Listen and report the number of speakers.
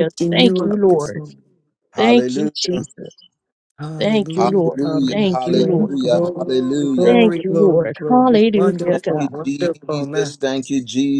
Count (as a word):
three